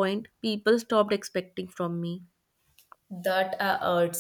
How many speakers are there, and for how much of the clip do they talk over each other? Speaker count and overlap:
two, no overlap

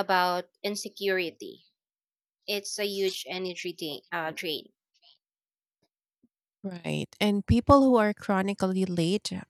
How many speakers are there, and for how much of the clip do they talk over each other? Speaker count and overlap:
two, no overlap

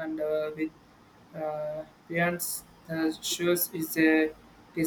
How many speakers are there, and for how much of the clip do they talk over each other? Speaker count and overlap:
one, no overlap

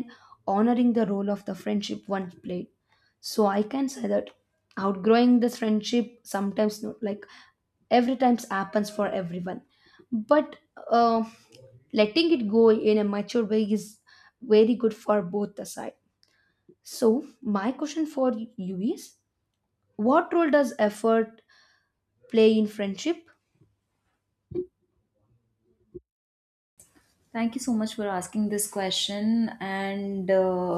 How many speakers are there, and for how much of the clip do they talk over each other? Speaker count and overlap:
two, no overlap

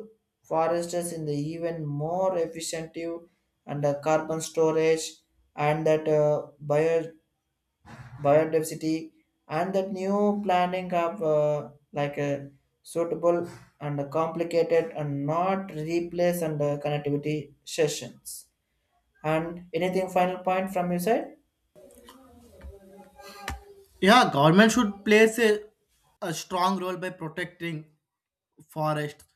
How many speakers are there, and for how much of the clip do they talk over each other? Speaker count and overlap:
two, no overlap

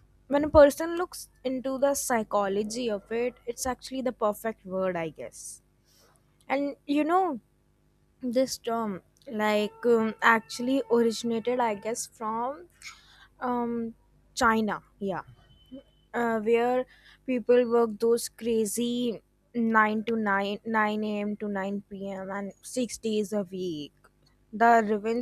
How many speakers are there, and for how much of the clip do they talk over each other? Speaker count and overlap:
one, no overlap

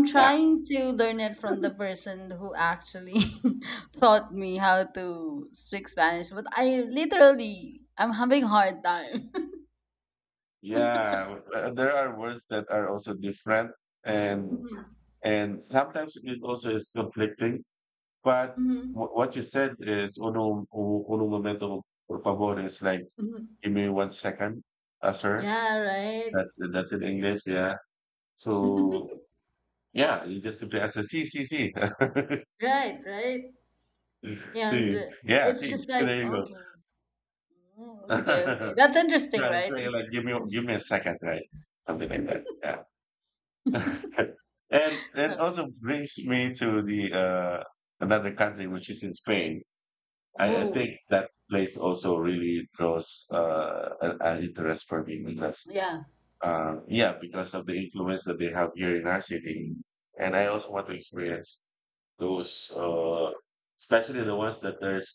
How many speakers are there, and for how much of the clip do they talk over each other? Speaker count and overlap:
two, about 7%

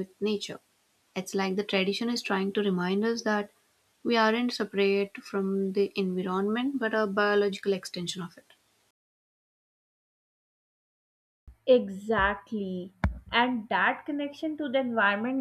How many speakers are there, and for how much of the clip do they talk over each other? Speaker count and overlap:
two, no overlap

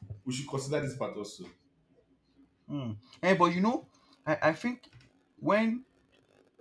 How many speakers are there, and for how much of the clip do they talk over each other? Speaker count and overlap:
two, no overlap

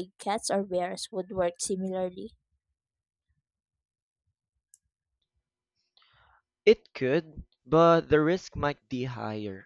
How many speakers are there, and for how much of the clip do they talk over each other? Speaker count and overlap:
two, no overlap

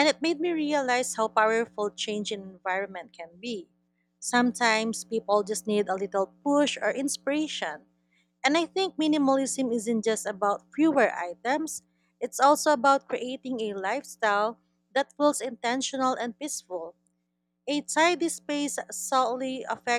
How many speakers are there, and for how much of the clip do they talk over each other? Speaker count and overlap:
one, no overlap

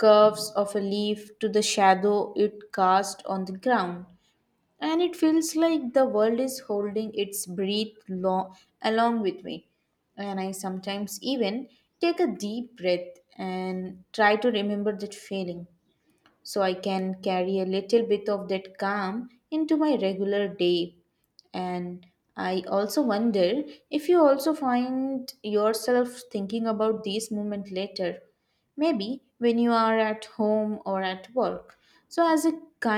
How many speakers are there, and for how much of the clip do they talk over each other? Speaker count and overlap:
one, no overlap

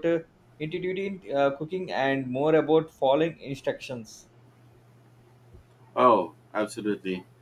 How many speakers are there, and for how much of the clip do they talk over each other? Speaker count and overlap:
two, no overlap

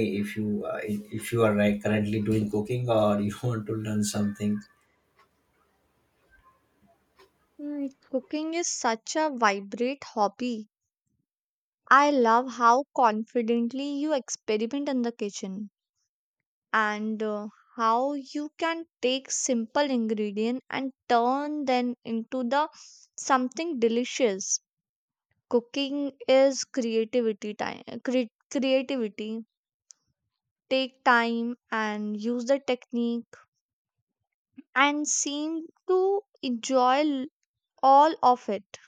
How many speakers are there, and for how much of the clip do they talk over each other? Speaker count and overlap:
two, no overlap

